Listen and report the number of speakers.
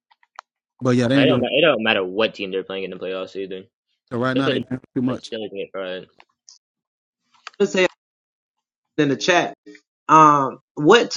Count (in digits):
3